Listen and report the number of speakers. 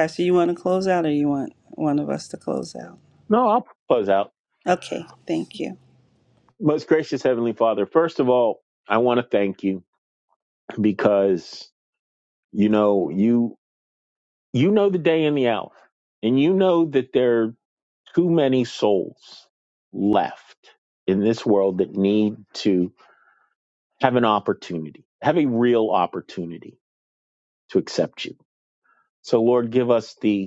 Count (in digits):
2